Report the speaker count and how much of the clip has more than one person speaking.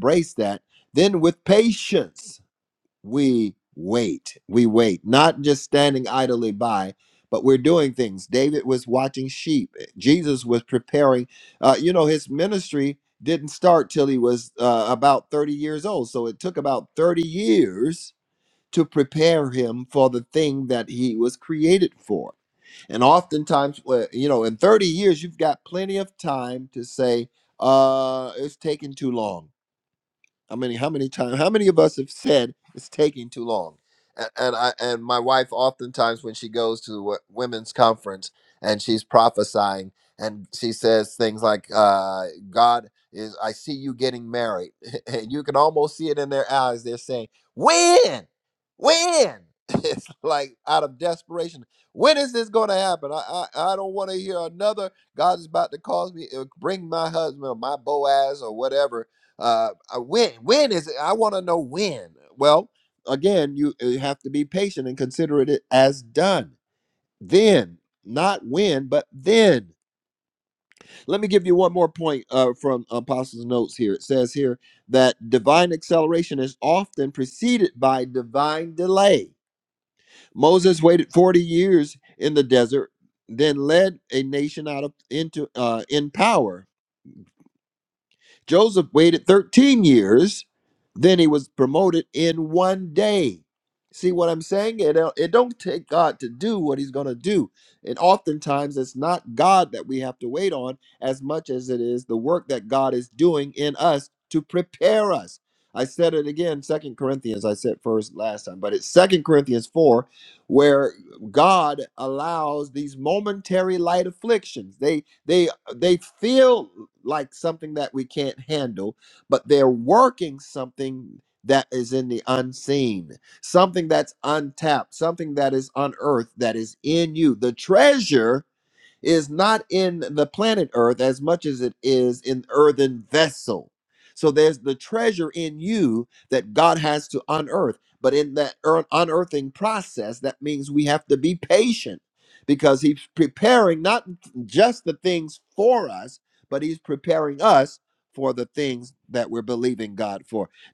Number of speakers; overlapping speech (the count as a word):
one, no overlap